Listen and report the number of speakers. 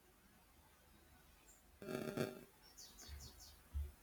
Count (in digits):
0